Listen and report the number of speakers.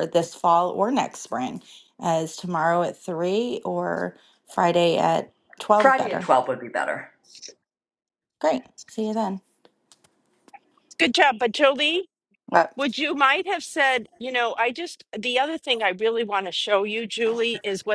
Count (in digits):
3